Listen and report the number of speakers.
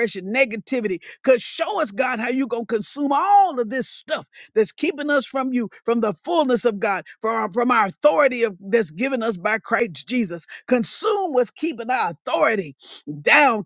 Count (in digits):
1